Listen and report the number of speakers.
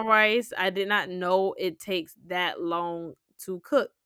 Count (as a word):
one